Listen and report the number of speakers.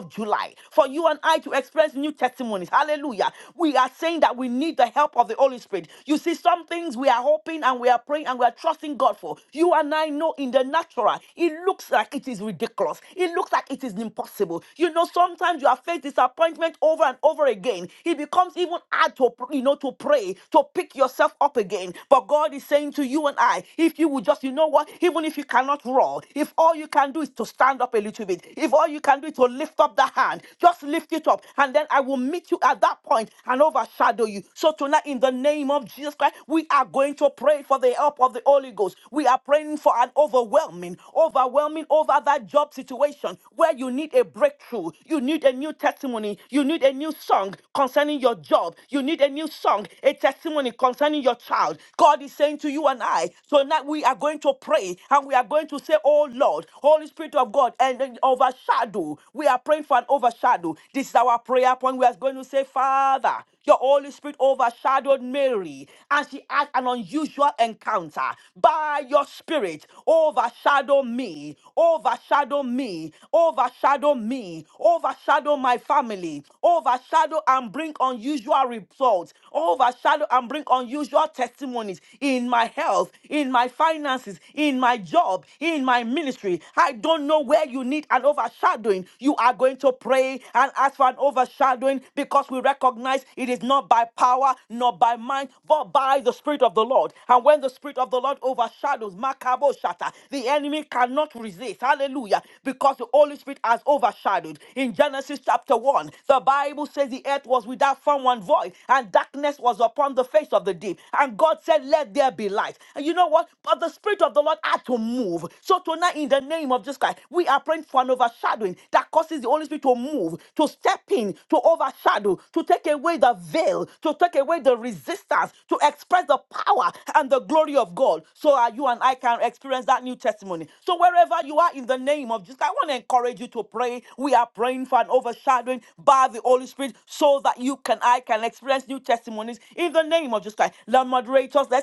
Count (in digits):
1